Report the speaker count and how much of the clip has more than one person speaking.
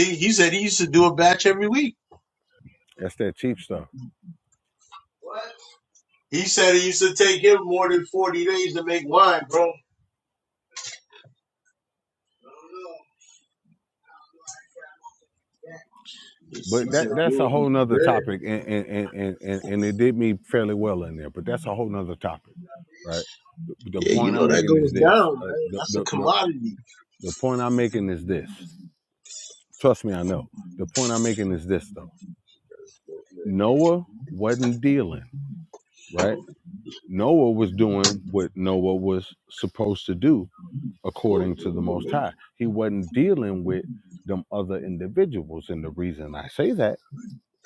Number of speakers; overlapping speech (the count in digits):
2, about 9%